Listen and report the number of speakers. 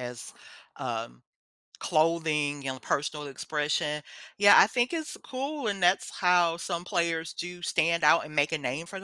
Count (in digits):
1